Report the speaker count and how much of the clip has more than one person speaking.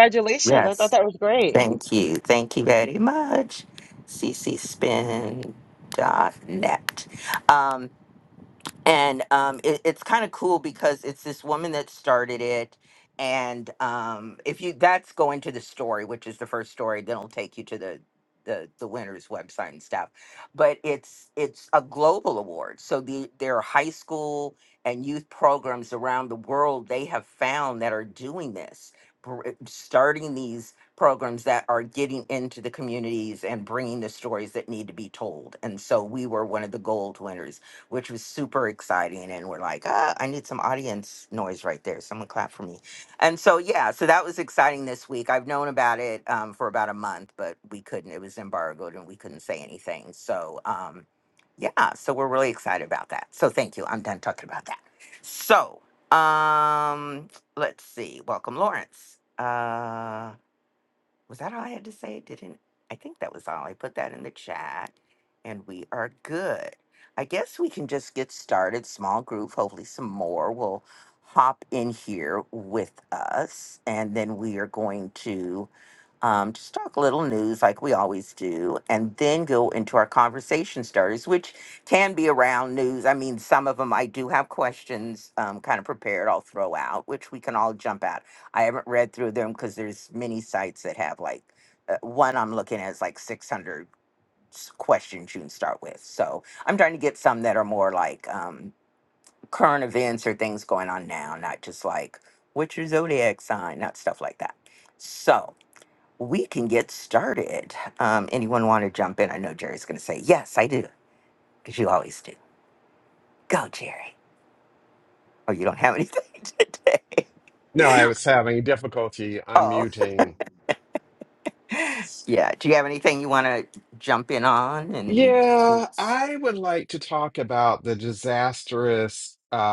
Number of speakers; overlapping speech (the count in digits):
3, about 1%